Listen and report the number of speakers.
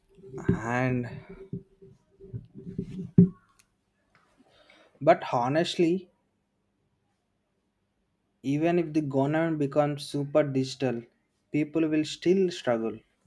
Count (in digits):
1